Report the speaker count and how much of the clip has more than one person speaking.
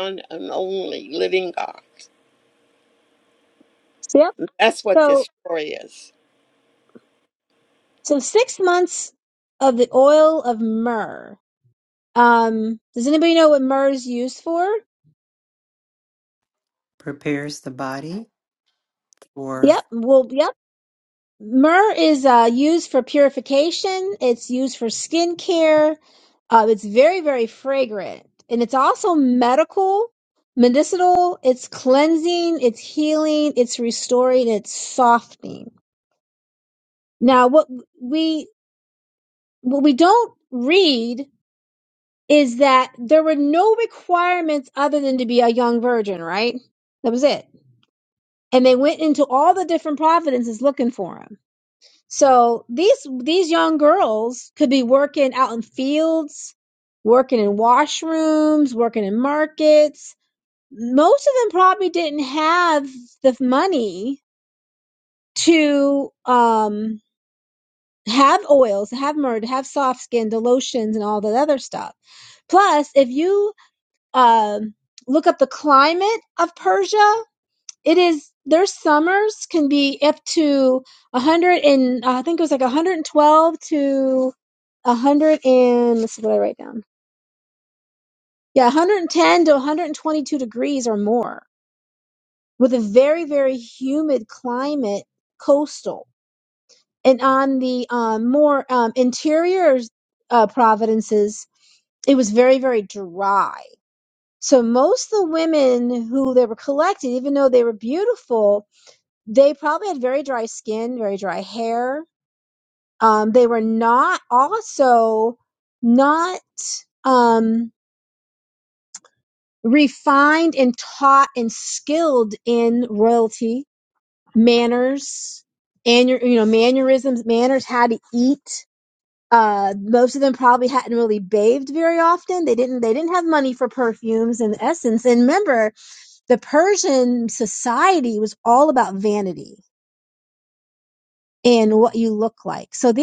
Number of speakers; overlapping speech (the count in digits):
3, under 1%